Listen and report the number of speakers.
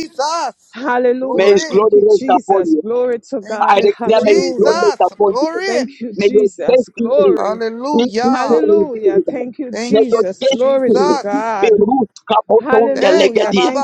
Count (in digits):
3